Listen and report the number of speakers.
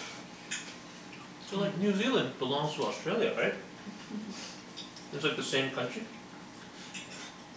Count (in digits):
1